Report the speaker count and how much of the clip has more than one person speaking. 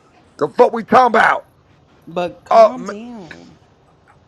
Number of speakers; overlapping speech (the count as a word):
two, about 10%